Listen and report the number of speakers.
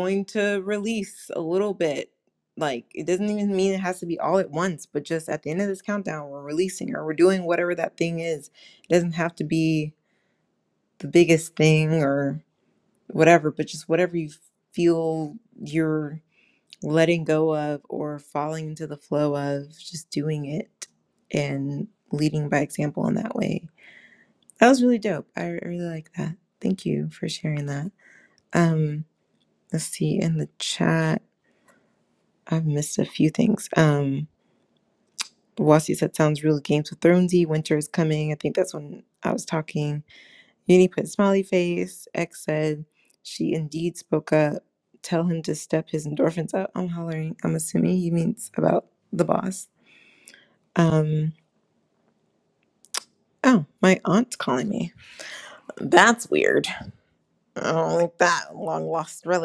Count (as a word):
one